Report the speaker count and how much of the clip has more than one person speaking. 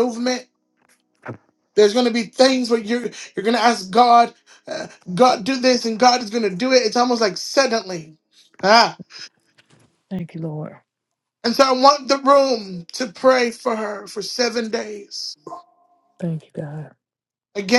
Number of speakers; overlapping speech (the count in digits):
2, no overlap